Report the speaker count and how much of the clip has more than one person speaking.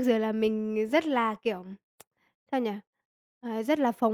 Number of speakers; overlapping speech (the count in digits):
1, no overlap